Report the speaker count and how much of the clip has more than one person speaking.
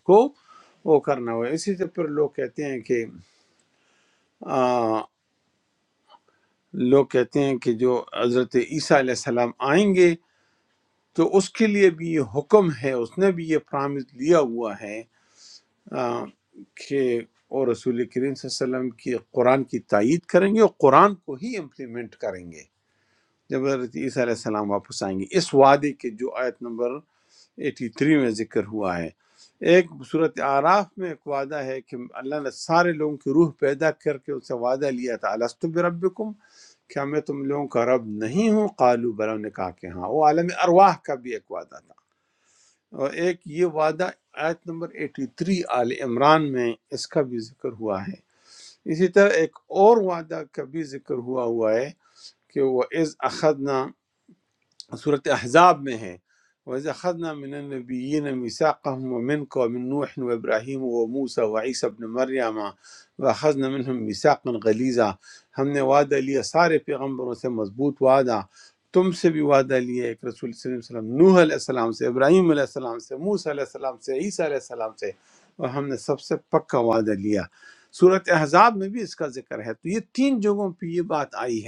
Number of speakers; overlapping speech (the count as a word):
one, no overlap